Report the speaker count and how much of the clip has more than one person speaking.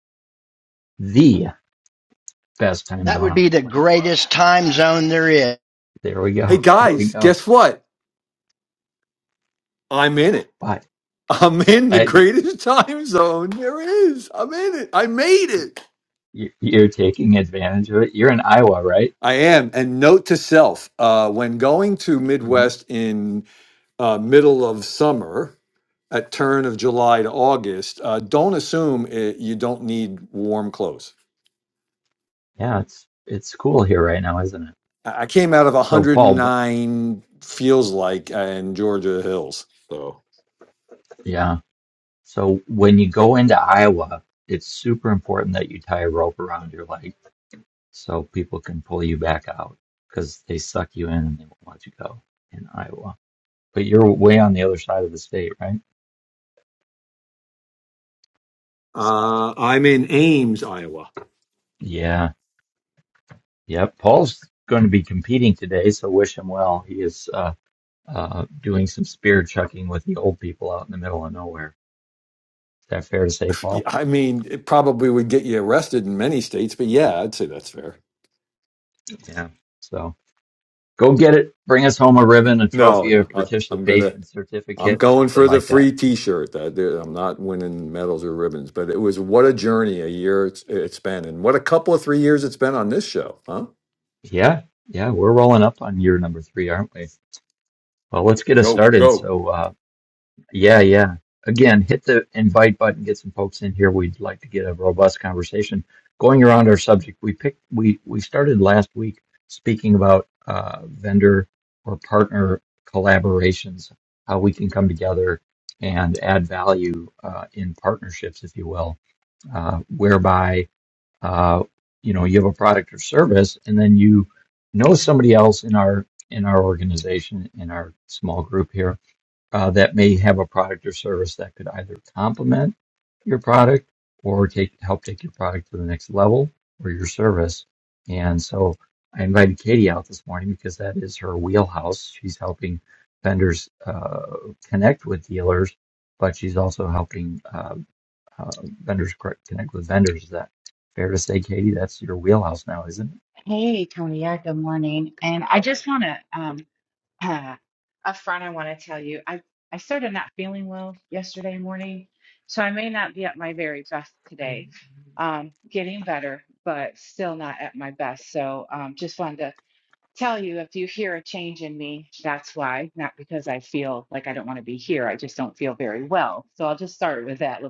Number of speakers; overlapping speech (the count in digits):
4, about 3%